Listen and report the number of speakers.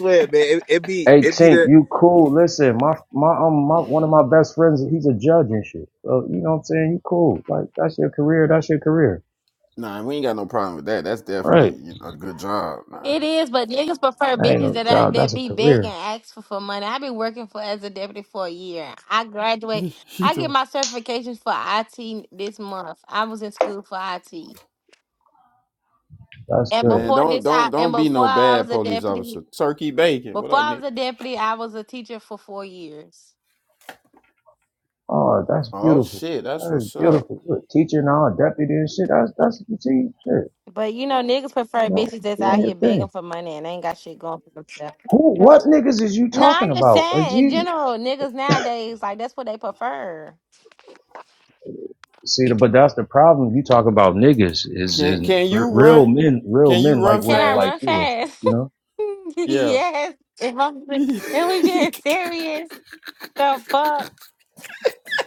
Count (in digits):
4